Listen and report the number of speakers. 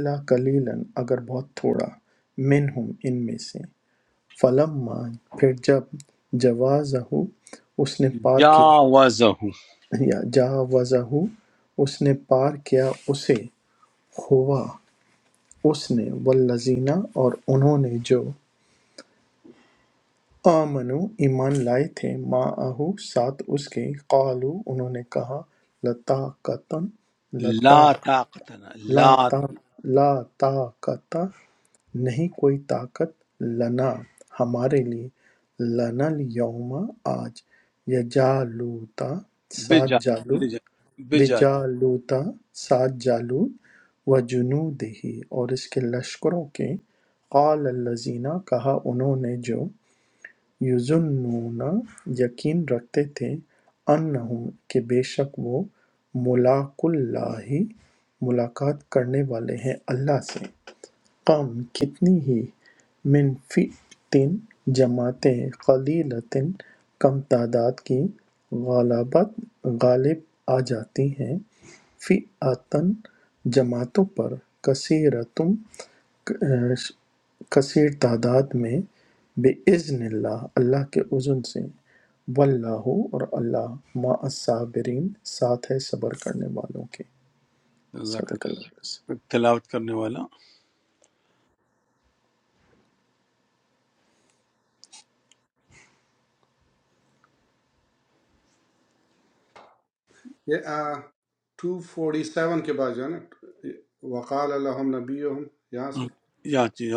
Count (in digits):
3